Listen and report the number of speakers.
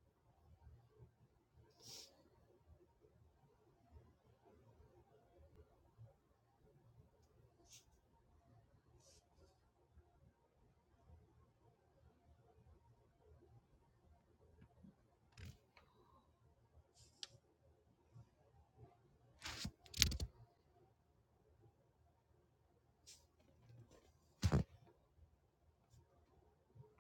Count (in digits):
0